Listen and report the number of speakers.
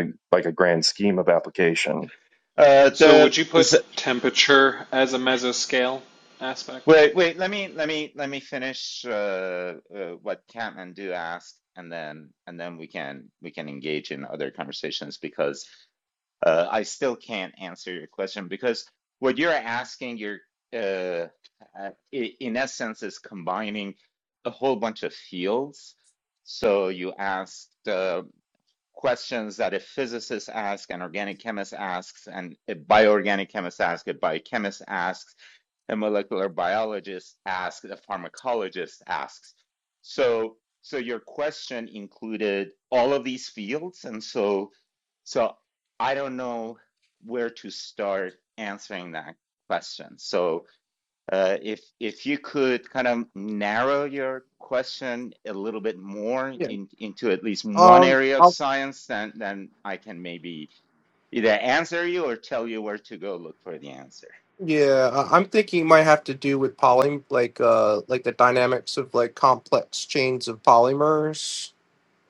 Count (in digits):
4